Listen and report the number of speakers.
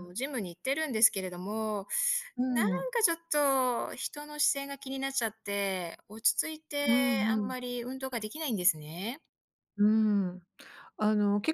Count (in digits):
2